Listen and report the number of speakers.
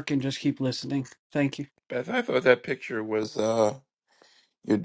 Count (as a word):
two